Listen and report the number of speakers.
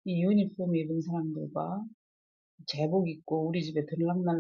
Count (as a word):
one